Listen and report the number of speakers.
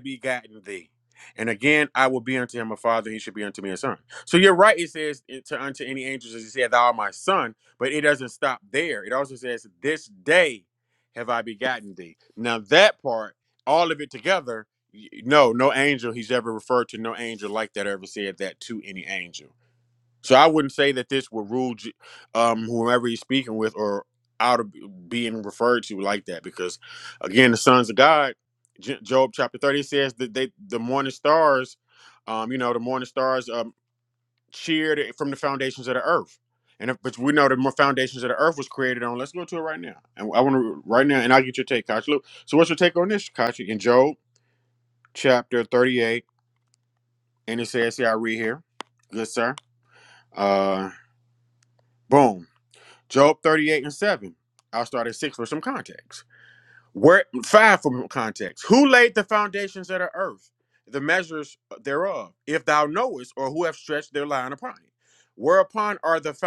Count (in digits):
1